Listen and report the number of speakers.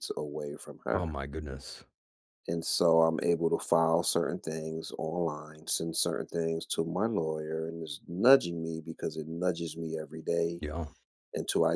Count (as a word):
two